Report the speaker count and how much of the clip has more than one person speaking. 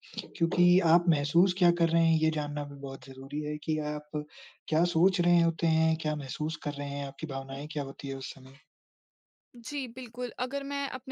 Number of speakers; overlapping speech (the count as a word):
two, no overlap